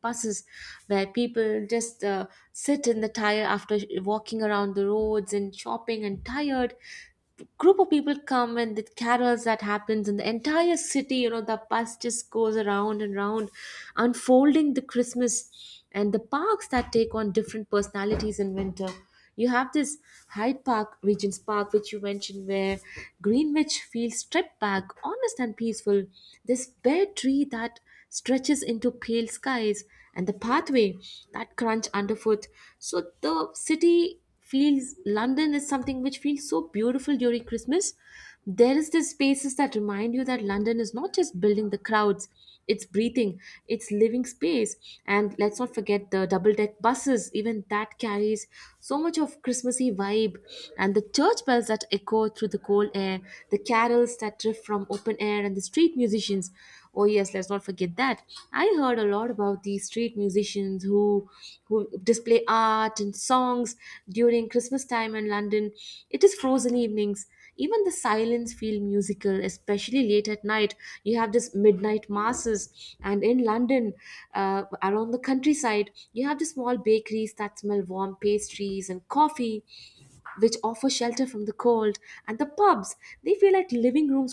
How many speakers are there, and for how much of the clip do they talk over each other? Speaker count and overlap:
1, no overlap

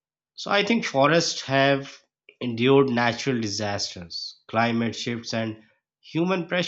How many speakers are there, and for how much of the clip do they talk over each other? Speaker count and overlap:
1, no overlap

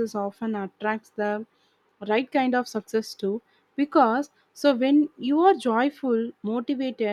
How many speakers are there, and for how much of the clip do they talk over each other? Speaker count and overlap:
1, no overlap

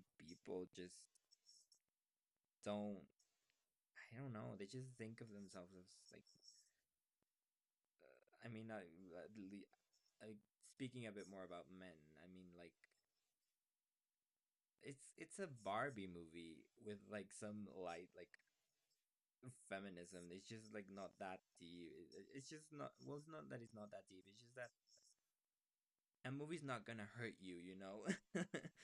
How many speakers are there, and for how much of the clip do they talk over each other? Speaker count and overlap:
1, no overlap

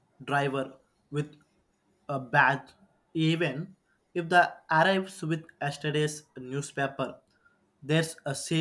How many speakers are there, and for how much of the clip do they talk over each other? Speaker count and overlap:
1, no overlap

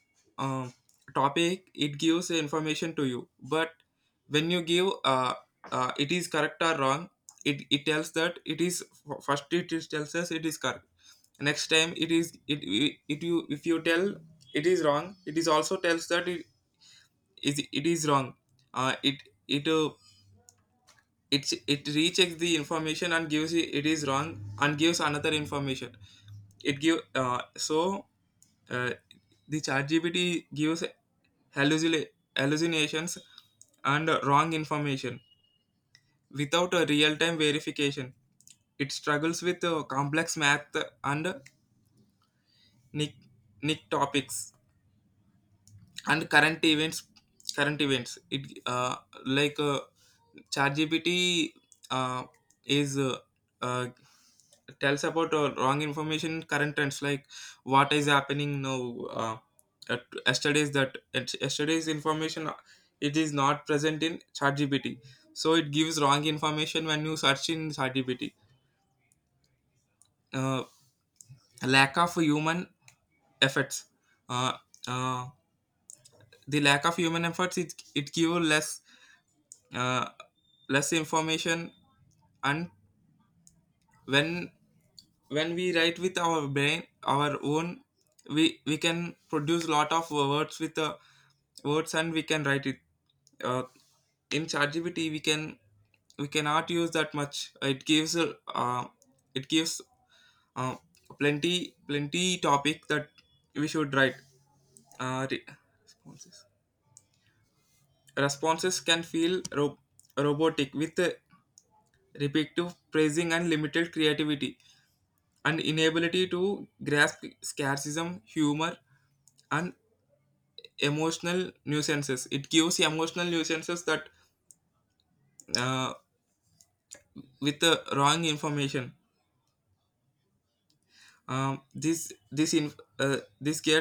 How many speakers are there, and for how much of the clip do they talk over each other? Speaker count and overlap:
1, no overlap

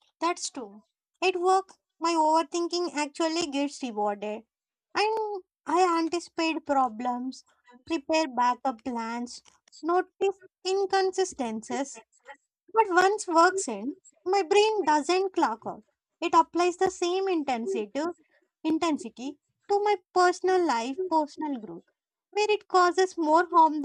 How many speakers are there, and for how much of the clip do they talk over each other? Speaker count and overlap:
1, no overlap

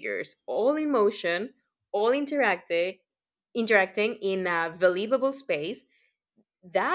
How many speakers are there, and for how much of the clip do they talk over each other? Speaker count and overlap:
1, no overlap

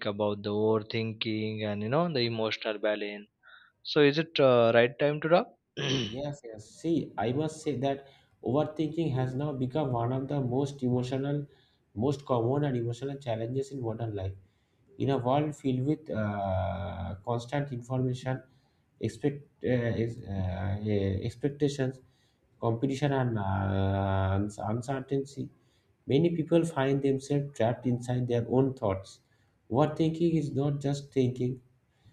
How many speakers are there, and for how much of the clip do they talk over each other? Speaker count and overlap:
2, no overlap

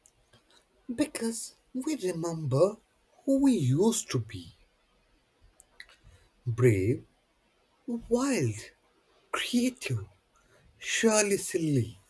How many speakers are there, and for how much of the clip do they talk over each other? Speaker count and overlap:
1, no overlap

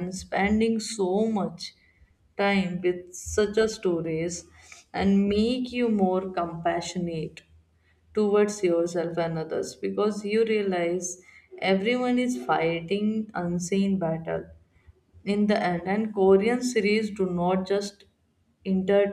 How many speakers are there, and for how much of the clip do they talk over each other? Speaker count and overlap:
1, no overlap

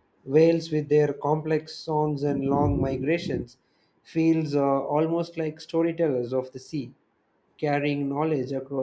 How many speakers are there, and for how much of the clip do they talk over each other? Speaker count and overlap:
1, no overlap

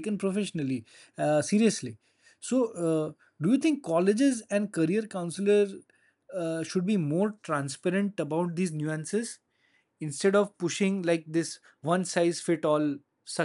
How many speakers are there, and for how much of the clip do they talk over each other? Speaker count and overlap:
1, no overlap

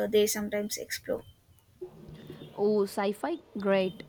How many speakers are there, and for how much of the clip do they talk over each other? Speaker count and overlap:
2, no overlap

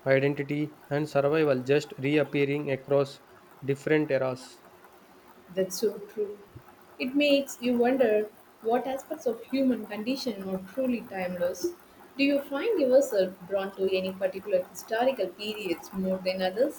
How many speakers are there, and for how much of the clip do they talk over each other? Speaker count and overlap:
2, no overlap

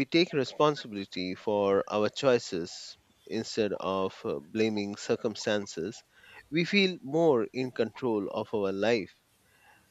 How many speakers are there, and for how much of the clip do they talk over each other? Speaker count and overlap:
1, no overlap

